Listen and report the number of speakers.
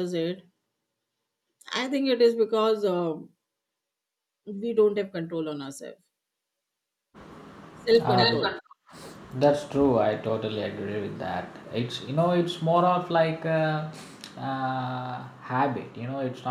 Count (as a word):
two